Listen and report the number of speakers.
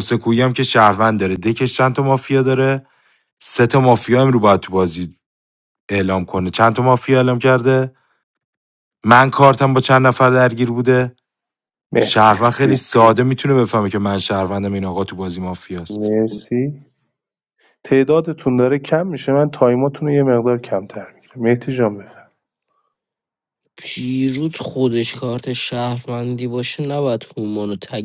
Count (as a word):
three